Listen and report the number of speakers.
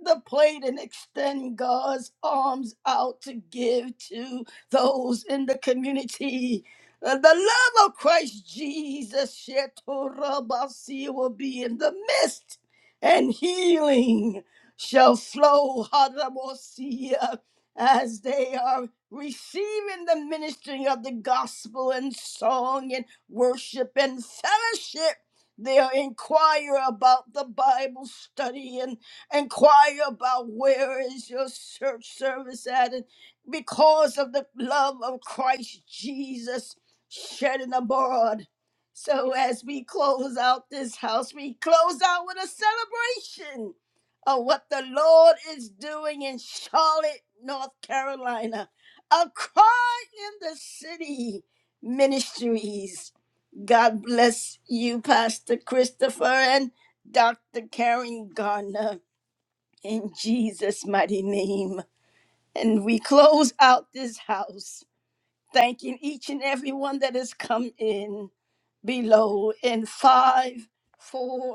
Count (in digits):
1